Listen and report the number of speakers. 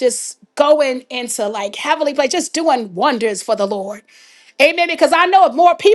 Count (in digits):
1